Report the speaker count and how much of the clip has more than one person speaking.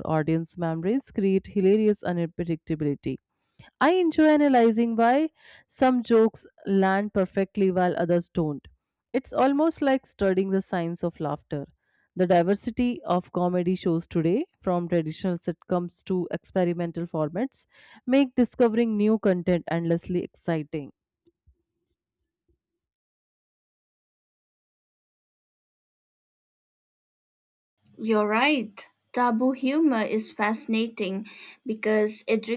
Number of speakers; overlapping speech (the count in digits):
2, no overlap